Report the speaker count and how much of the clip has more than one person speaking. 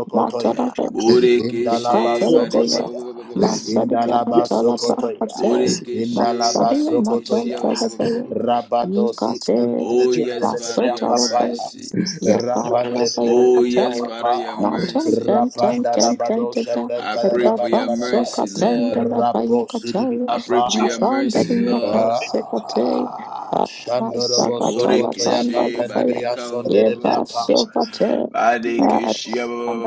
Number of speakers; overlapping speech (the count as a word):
three, about 76%